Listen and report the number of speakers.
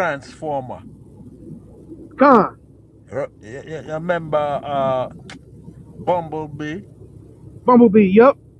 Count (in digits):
2